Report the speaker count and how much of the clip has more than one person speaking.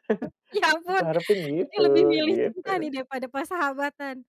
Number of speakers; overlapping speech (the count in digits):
2, about 34%